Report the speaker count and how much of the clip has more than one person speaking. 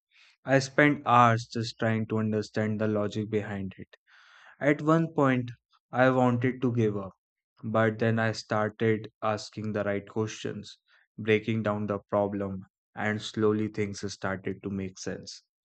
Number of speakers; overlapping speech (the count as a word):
one, no overlap